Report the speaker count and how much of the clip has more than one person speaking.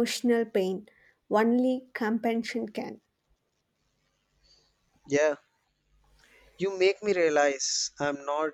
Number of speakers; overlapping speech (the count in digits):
2, no overlap